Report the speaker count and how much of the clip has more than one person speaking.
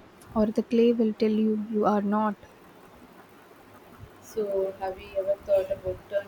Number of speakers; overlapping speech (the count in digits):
2, no overlap